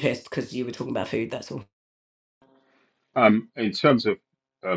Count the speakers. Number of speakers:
2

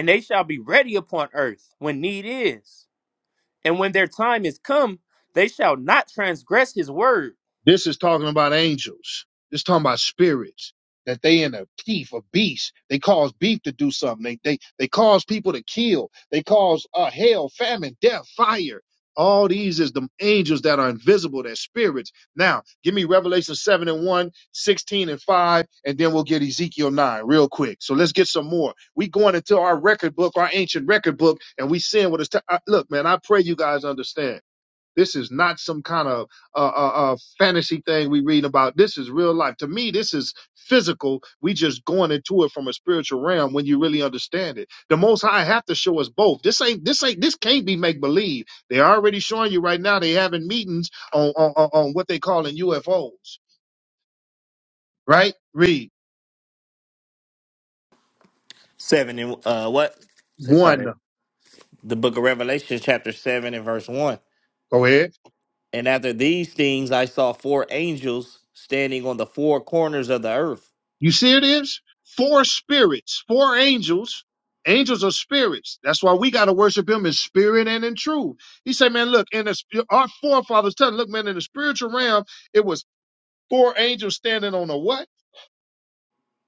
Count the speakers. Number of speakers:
3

